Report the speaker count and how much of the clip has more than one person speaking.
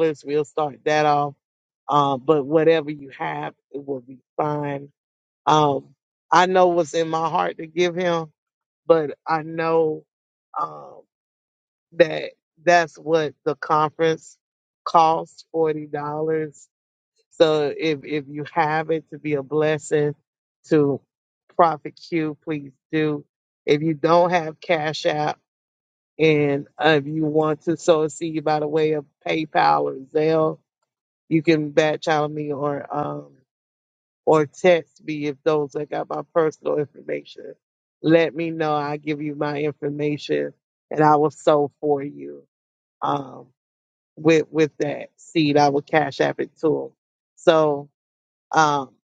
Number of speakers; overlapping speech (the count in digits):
1, no overlap